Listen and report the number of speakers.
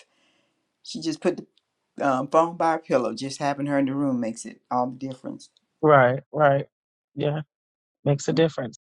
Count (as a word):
two